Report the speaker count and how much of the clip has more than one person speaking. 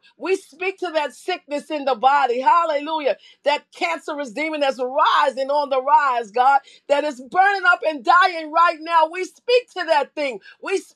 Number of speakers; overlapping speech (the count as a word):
one, no overlap